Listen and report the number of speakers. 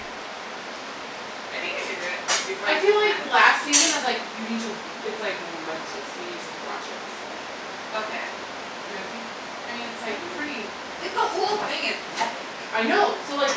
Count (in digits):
2